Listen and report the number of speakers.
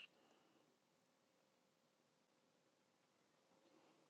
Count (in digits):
0